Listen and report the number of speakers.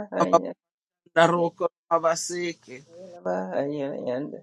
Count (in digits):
2